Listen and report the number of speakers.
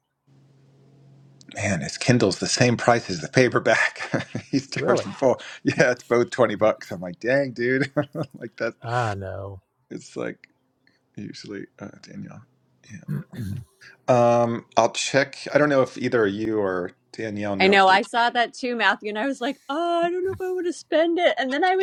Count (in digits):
3